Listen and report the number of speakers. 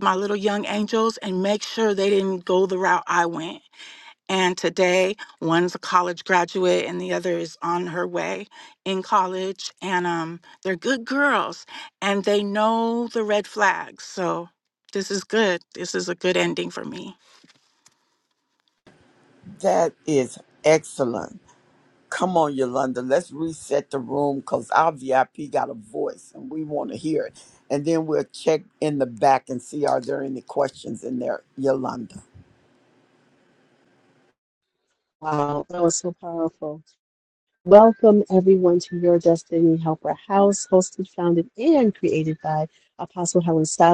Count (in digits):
3